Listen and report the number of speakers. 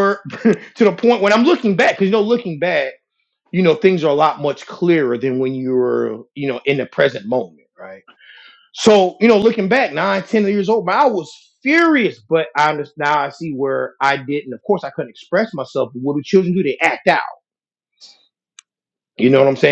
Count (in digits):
1